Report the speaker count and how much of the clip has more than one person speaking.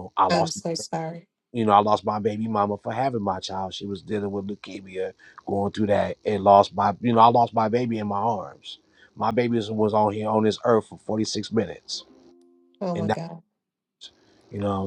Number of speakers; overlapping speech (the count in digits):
2, about 3%